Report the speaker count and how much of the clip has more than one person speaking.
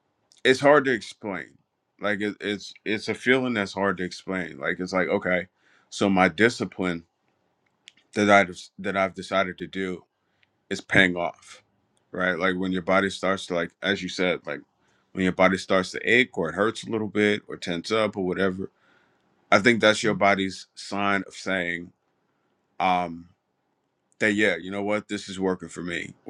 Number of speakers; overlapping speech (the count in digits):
1, no overlap